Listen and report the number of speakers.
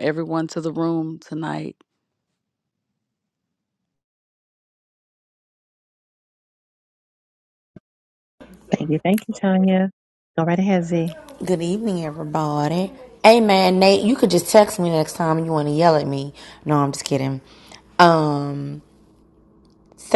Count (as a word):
three